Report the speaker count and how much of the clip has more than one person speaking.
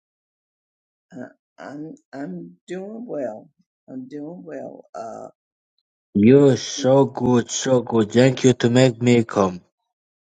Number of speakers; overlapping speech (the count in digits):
2, about 1%